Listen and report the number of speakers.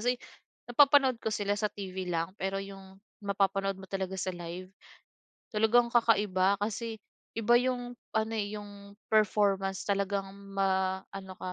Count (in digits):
1